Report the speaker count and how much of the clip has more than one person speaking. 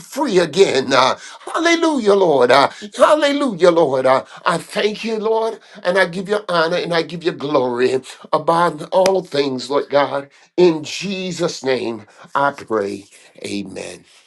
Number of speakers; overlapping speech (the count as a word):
one, no overlap